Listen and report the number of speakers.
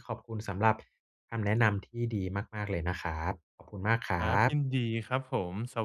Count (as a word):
two